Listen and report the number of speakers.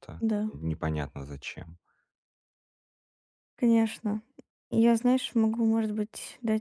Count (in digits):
2